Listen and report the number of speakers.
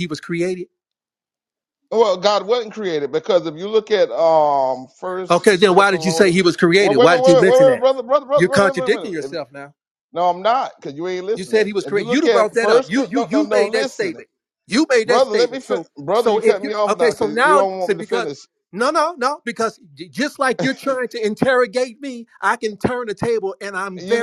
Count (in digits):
2